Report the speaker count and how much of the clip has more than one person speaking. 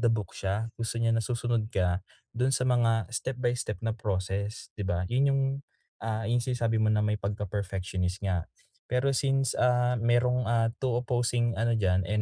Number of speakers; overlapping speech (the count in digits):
1, no overlap